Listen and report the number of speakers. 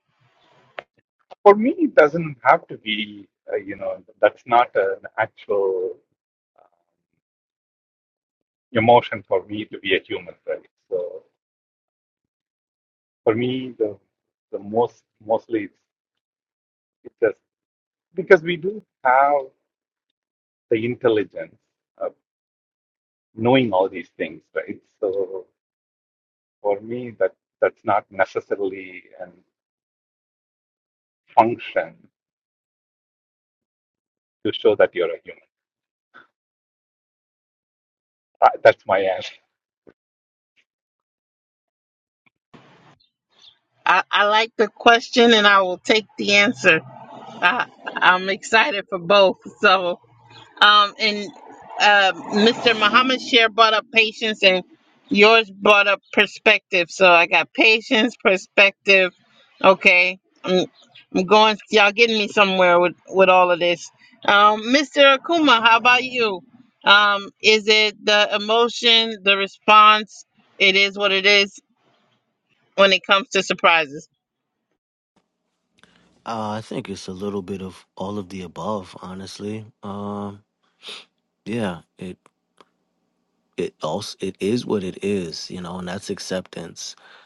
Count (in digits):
3